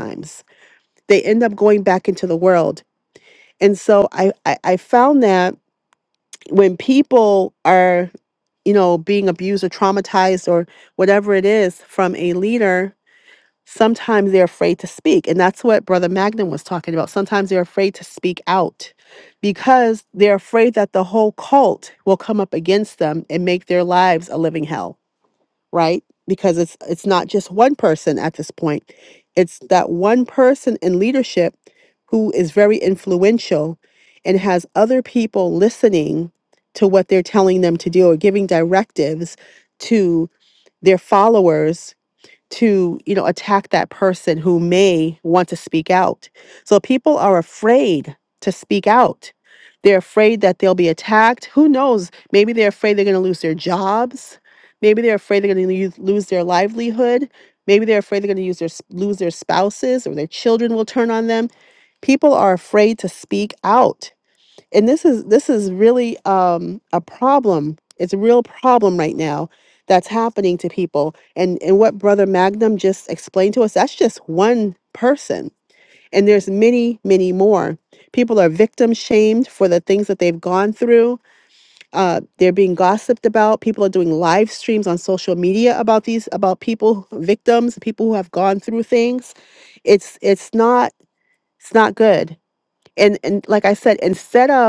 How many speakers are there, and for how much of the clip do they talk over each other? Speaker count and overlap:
1, no overlap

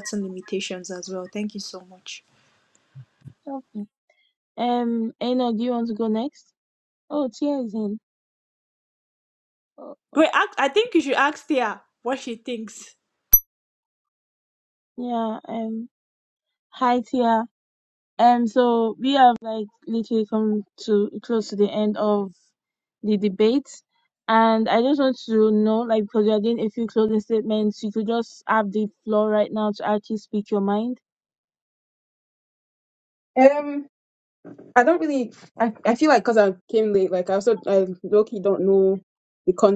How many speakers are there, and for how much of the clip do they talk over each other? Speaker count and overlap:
3, under 1%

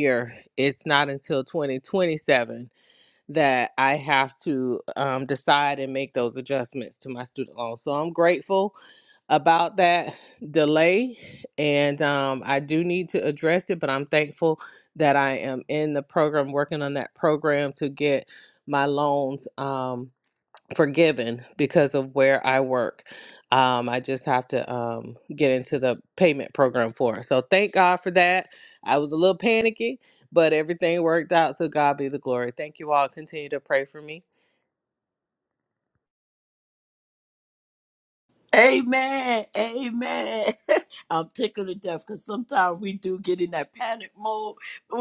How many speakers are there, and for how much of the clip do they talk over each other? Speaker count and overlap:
2, no overlap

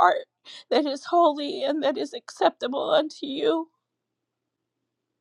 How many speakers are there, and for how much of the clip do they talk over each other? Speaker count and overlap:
1, no overlap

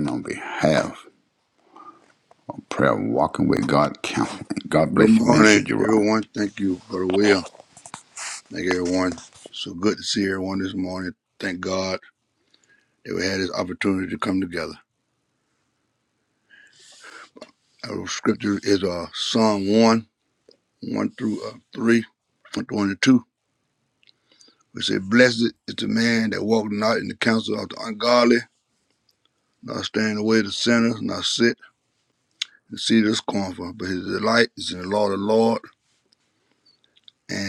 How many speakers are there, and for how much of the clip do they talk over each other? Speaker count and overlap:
2, about 3%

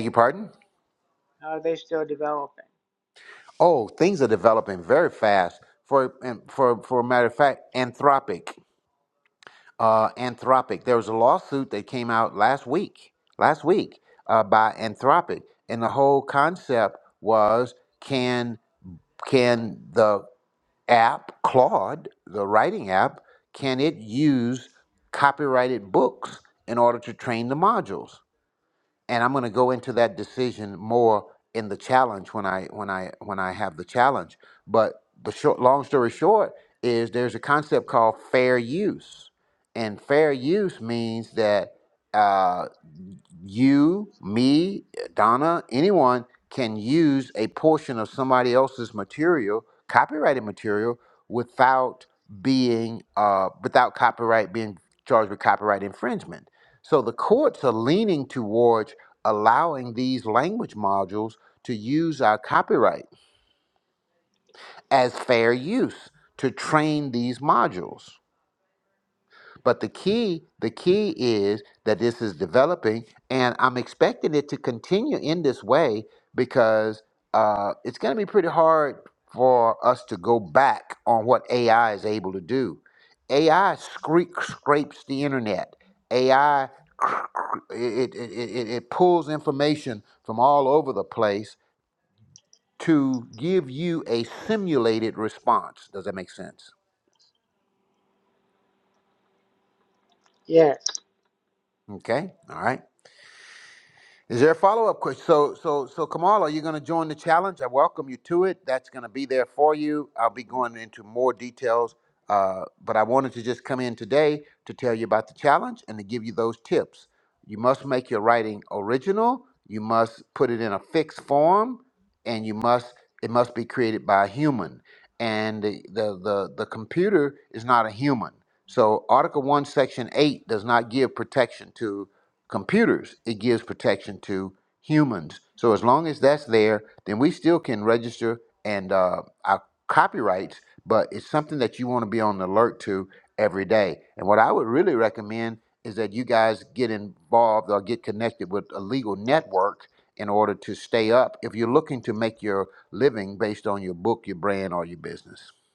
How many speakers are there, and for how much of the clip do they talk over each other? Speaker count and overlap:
2, no overlap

